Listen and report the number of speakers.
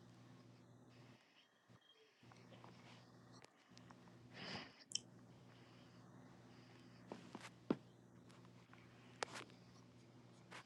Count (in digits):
0